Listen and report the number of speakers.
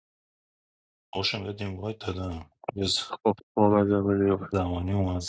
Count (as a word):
two